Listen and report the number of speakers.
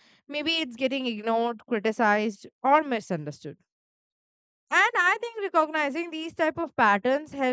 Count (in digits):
1